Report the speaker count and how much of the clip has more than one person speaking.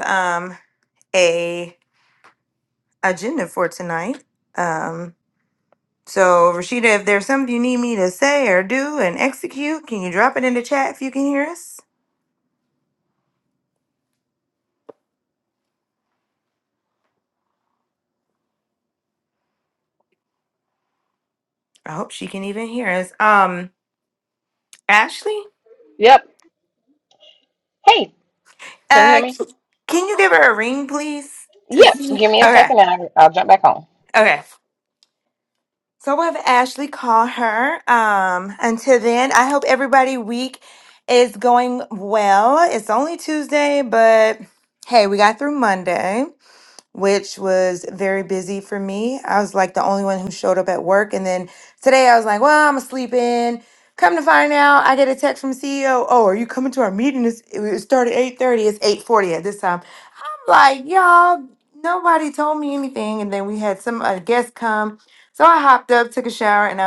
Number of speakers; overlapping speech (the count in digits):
2, about 2%